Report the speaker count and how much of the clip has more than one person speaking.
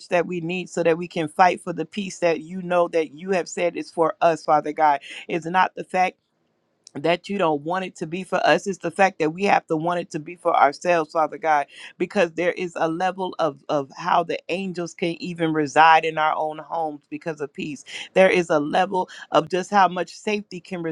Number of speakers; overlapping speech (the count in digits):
1, no overlap